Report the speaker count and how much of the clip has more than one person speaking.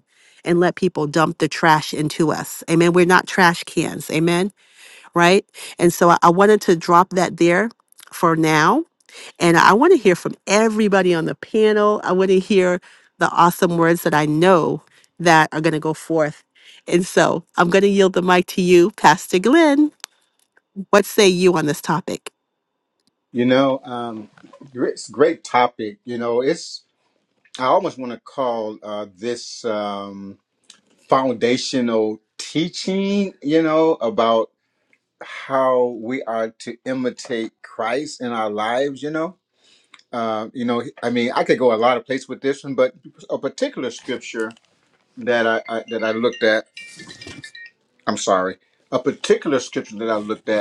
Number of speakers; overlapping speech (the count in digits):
2, no overlap